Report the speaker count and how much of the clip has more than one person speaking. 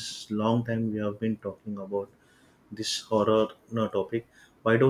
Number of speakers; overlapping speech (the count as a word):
one, no overlap